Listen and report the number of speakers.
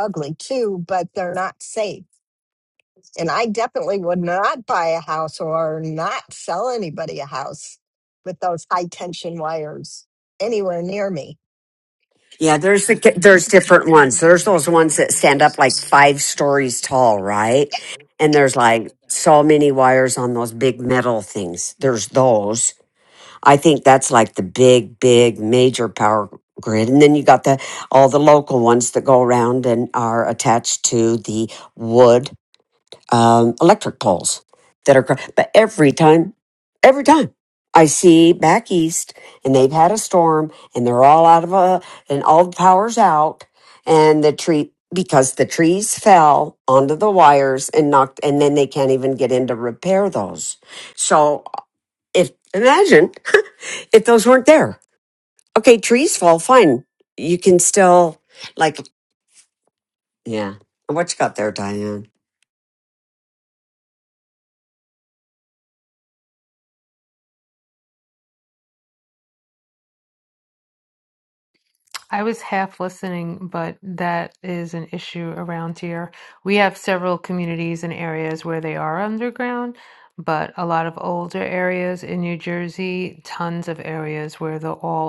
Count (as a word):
three